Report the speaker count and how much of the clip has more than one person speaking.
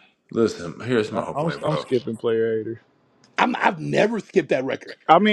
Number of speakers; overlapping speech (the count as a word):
three, about 14%